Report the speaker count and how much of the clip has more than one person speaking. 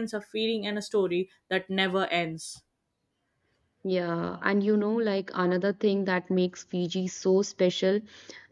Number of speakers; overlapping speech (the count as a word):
two, no overlap